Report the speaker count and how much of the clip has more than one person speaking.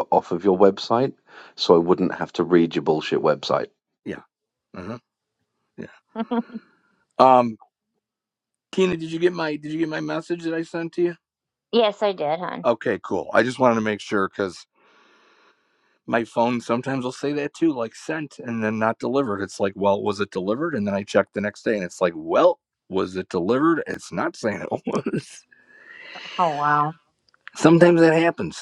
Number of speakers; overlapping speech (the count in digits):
3, no overlap